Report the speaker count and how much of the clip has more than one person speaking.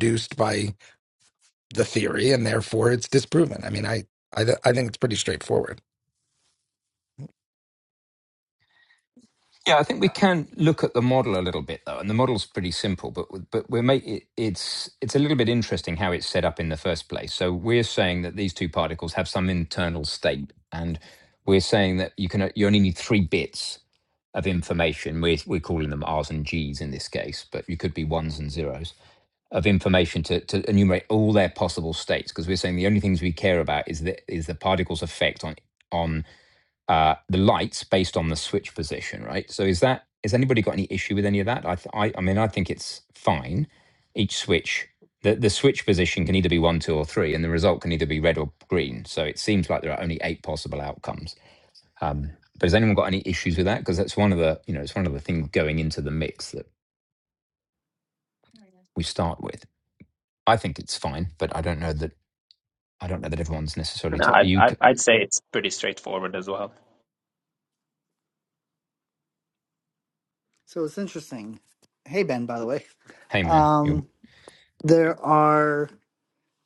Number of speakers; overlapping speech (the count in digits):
4, about 2%